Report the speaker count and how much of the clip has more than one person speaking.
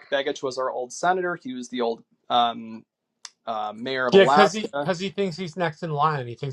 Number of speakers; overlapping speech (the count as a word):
two, about 12%